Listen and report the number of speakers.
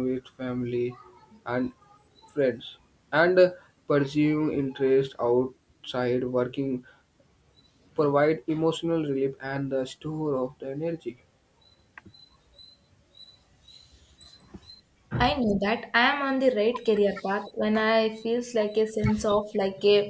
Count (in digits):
2